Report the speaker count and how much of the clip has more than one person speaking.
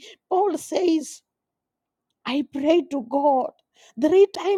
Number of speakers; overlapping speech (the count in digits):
1, no overlap